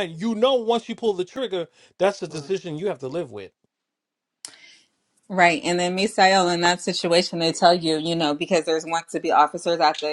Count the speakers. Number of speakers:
2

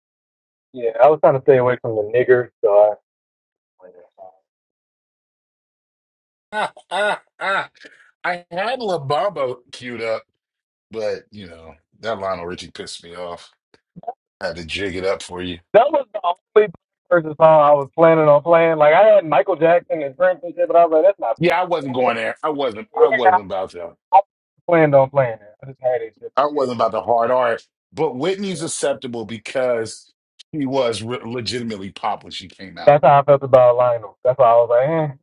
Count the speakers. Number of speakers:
2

